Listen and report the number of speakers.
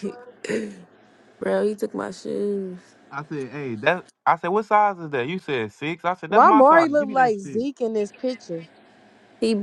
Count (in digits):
3